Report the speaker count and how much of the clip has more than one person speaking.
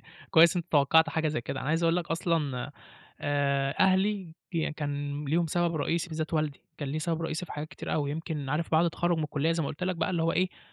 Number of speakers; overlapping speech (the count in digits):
1, no overlap